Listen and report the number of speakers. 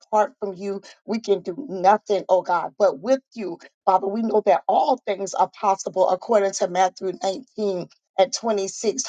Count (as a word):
one